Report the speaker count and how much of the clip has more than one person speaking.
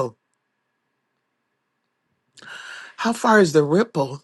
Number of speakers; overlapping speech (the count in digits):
1, no overlap